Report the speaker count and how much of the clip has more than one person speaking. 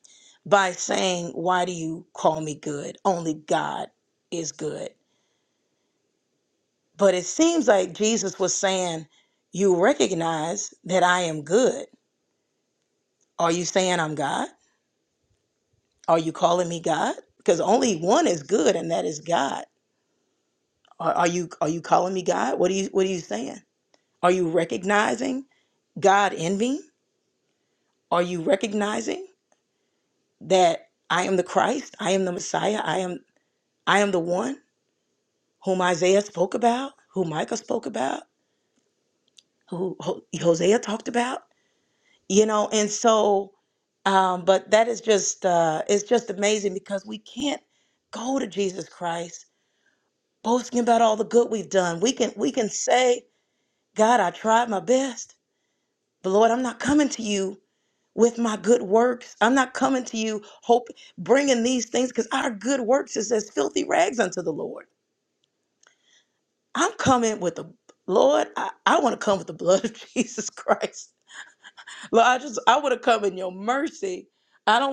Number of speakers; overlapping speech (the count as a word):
one, no overlap